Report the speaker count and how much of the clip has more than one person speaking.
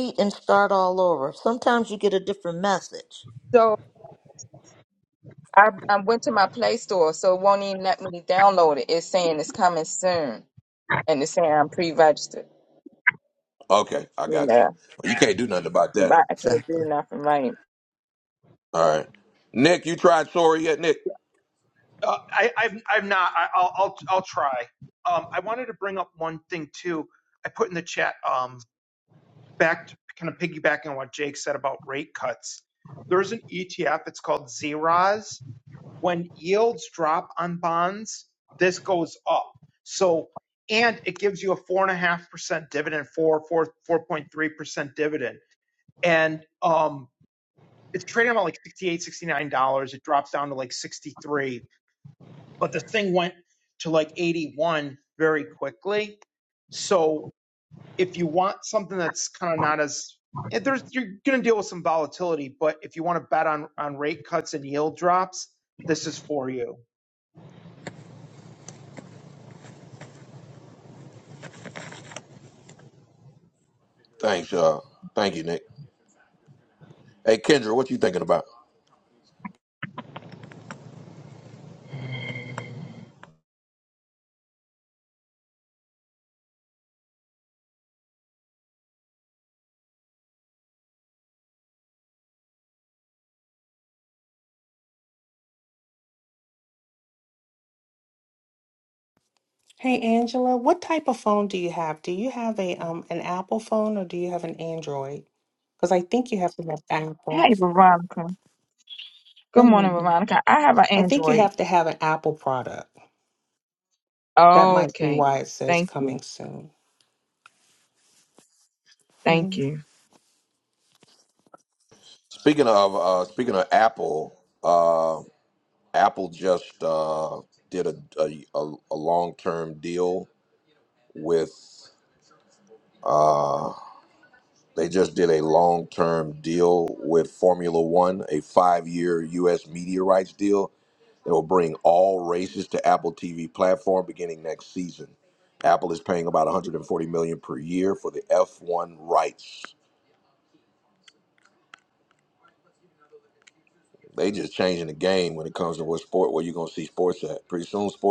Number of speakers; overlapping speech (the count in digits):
5, about 2%